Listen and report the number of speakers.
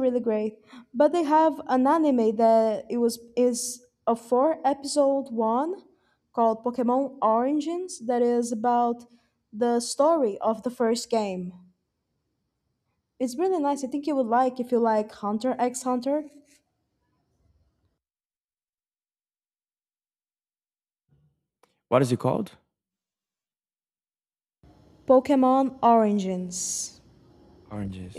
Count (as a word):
two